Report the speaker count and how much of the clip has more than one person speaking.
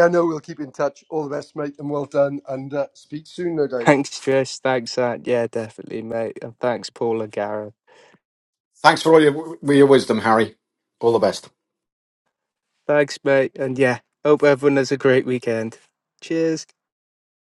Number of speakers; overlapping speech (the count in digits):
3, under 1%